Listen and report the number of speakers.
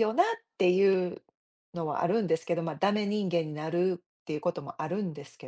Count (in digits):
1